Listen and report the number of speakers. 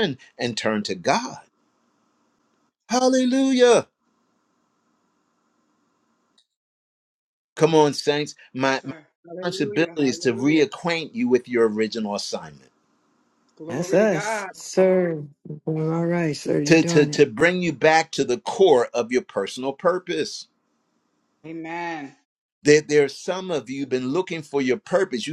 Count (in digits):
3